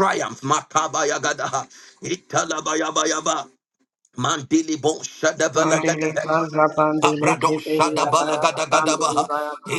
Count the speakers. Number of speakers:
2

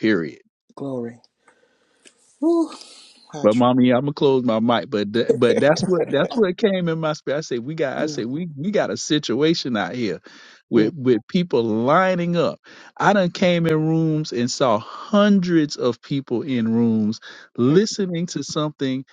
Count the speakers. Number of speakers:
2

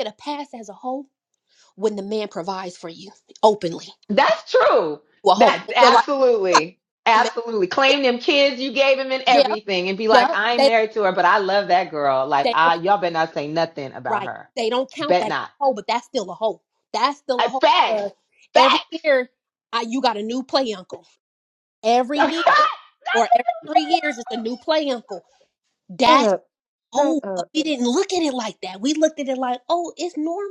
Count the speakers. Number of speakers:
2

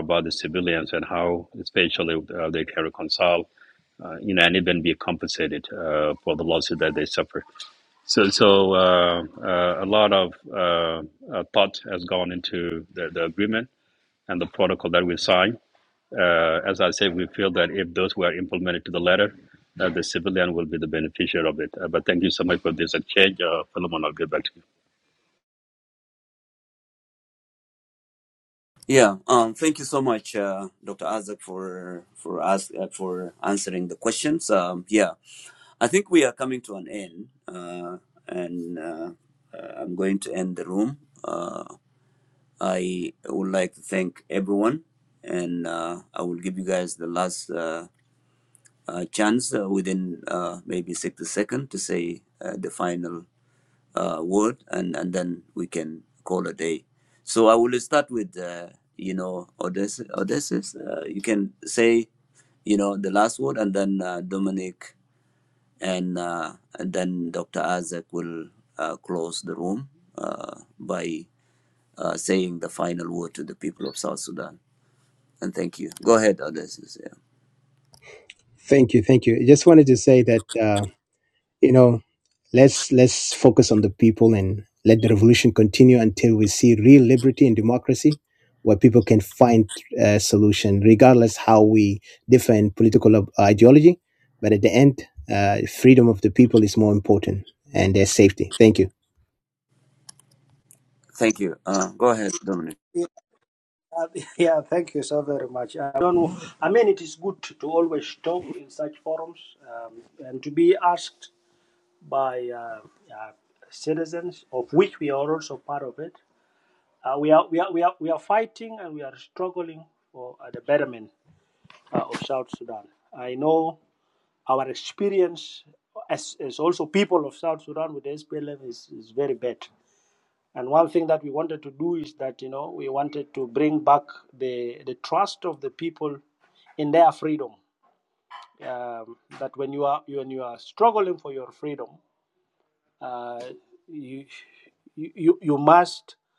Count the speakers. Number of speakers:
4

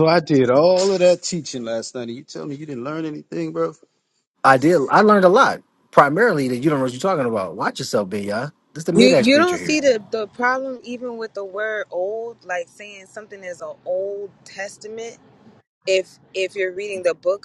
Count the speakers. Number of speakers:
3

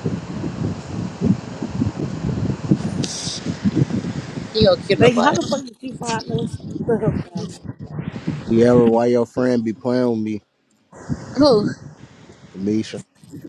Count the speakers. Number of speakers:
3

